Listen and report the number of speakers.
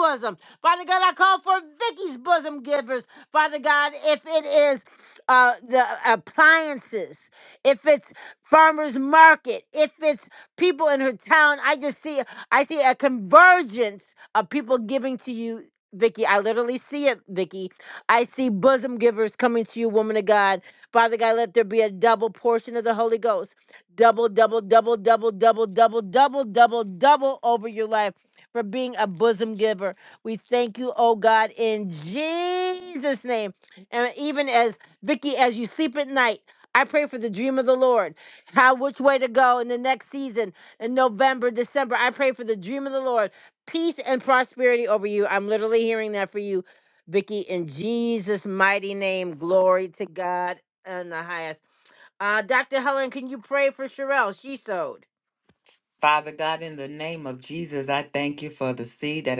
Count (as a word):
two